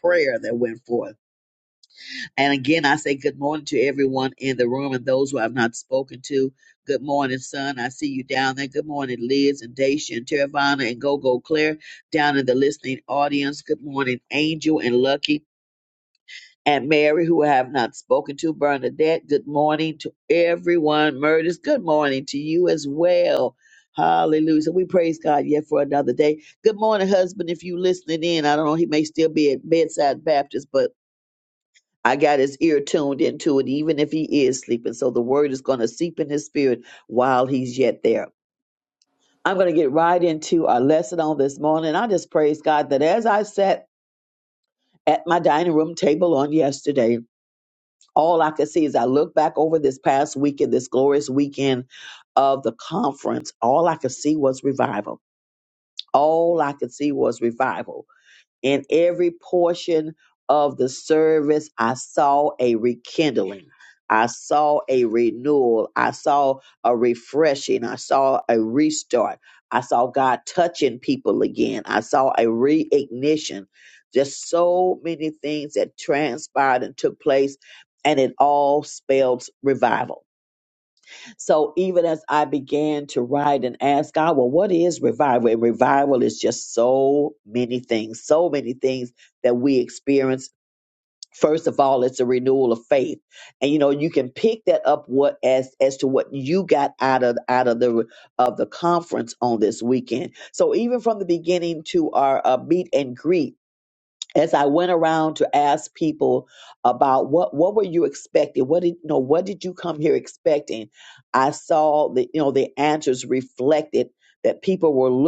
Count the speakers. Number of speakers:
1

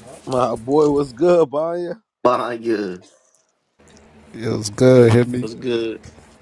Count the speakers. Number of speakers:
3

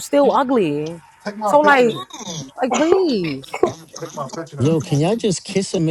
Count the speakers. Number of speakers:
3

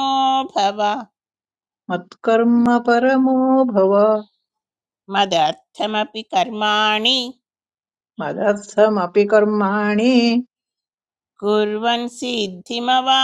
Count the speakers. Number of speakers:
2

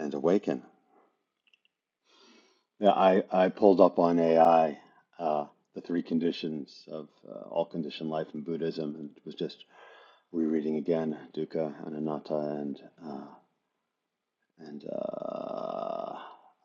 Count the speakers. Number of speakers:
1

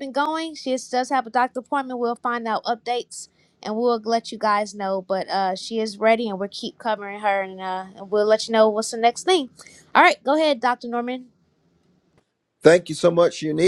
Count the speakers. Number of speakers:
2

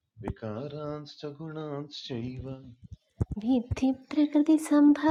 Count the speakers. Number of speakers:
2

